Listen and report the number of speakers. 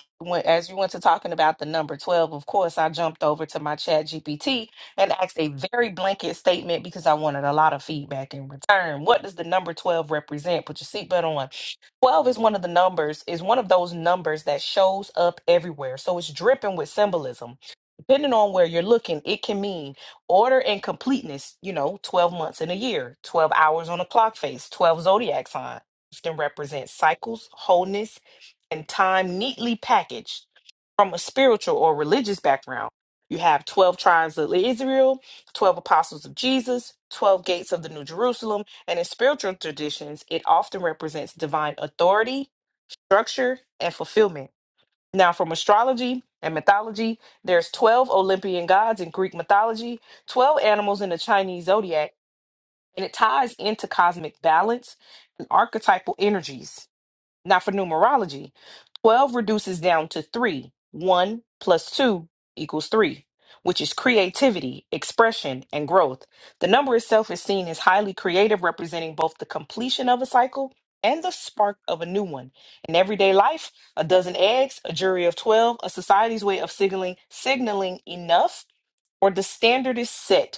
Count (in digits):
1